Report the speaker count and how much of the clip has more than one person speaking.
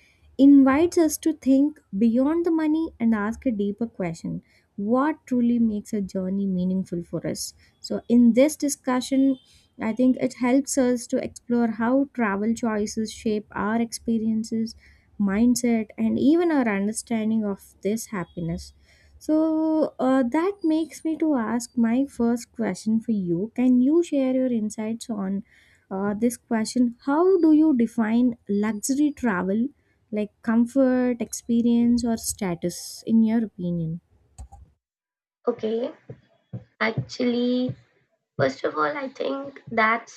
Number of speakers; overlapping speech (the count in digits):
2, no overlap